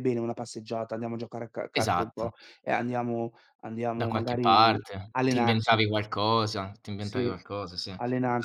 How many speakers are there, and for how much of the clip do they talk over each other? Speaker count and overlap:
2, about 27%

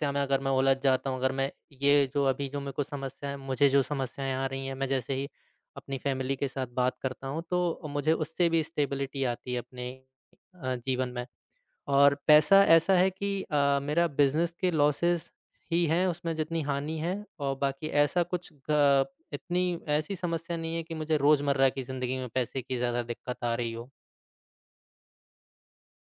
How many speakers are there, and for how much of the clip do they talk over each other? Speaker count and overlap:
1, no overlap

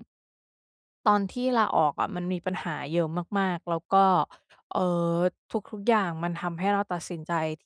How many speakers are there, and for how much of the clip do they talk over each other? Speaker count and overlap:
1, no overlap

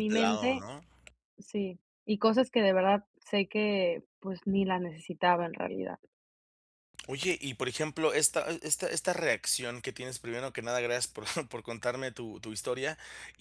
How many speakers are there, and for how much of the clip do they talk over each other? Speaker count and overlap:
2, about 5%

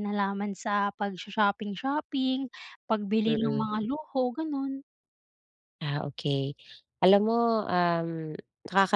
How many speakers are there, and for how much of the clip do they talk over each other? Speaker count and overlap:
2, about 6%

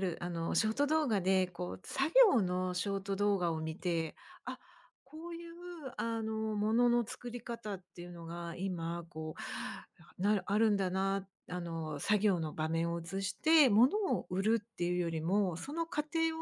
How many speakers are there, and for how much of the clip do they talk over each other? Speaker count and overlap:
1, no overlap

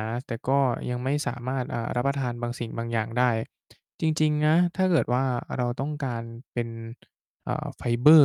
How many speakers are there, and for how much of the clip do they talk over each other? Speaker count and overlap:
1, no overlap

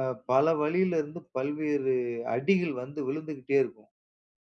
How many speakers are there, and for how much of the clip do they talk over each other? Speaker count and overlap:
1, no overlap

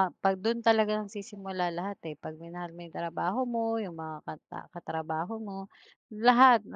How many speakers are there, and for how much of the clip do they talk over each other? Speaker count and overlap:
1, no overlap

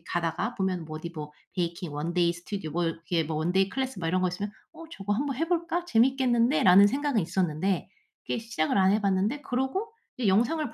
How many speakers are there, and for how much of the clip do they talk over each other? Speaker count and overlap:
1, no overlap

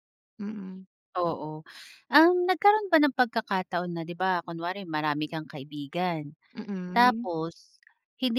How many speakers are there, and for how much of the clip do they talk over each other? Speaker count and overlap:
2, about 4%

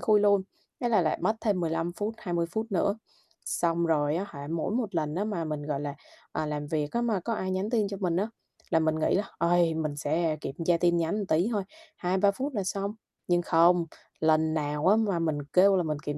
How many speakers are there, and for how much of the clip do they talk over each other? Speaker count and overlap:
1, no overlap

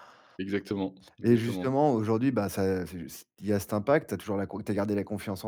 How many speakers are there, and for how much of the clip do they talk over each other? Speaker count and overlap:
2, about 9%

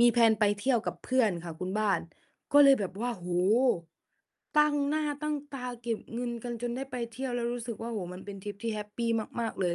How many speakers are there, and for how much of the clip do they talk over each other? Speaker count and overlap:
1, no overlap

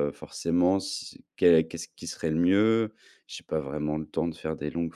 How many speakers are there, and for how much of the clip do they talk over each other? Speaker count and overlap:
1, no overlap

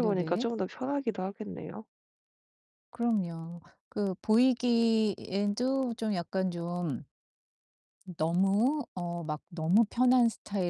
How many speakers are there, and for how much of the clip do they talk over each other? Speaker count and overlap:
2, about 4%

